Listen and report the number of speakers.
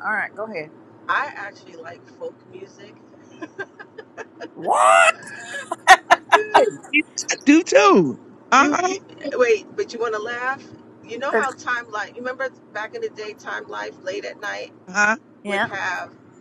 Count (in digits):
3